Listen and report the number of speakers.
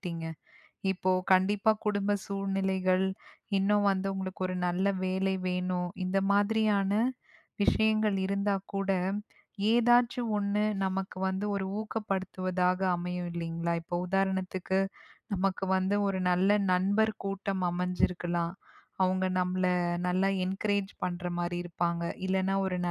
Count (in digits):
1